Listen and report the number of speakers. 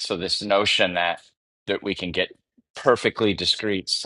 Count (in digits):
1